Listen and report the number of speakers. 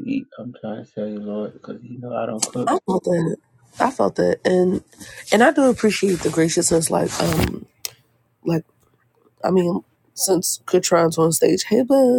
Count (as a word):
two